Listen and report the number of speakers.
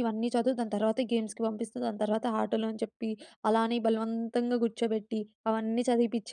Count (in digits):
1